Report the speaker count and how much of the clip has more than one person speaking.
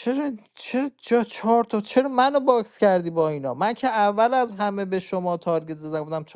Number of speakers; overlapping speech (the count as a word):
one, no overlap